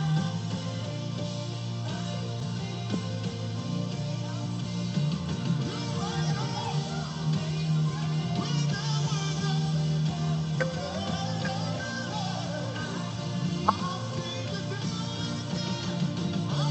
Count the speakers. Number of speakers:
zero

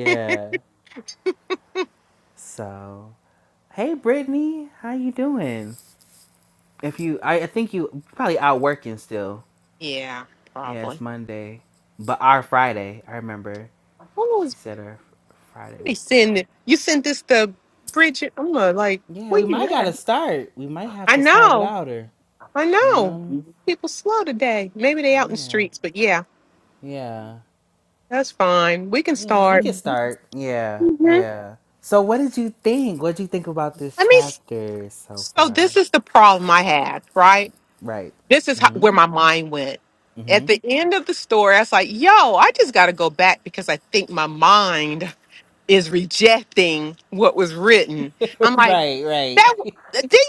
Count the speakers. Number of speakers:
two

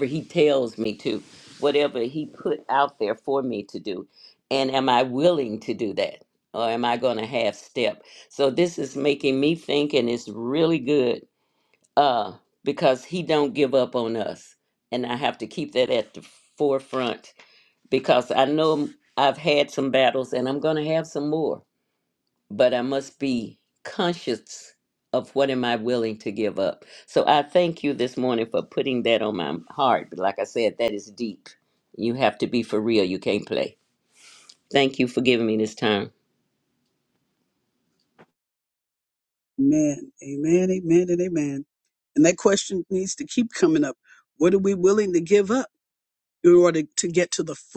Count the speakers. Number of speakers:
two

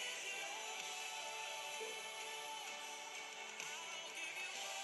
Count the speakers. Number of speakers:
zero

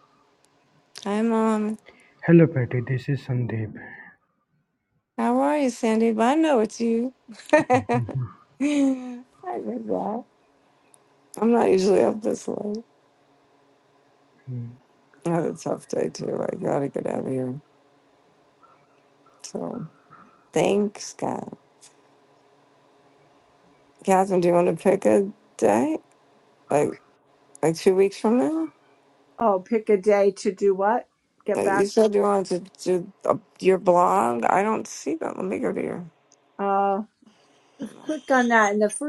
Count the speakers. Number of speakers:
three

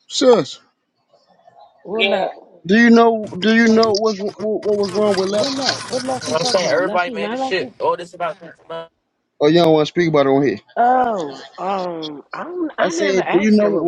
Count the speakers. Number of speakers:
three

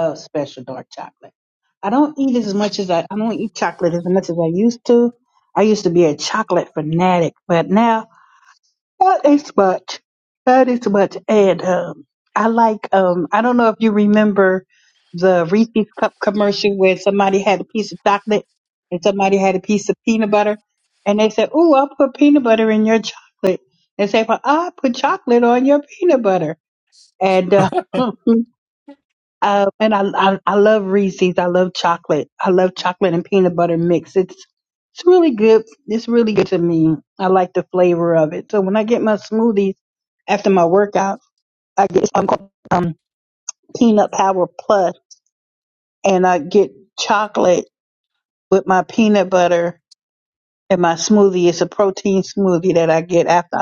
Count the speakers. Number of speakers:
one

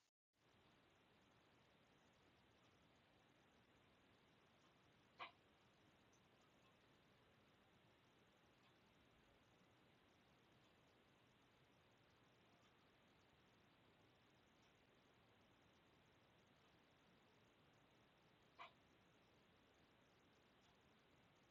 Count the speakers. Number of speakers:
zero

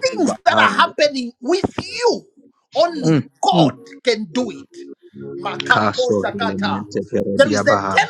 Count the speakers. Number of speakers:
two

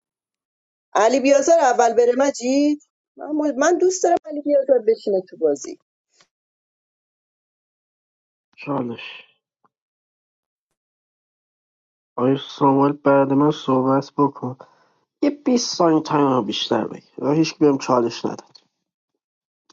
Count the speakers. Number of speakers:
two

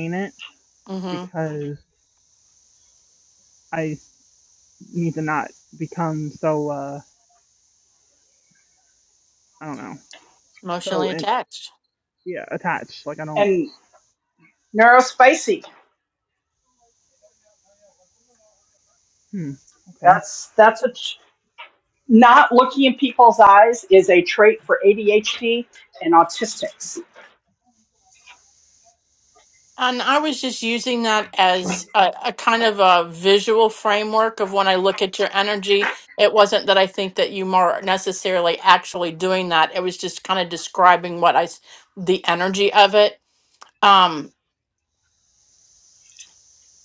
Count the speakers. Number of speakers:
three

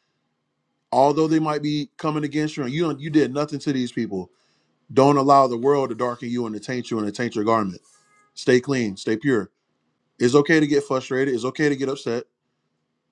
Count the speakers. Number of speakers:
one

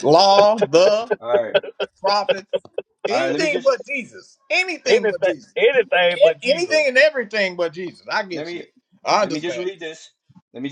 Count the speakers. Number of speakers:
three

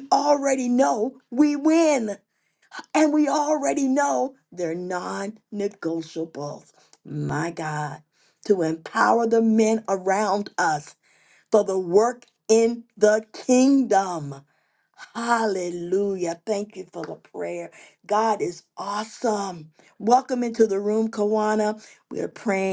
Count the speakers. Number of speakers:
one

